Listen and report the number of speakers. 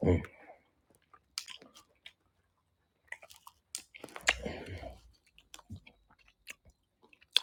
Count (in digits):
0